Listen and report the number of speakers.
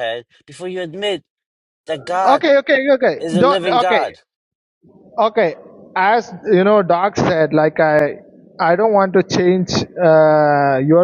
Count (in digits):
2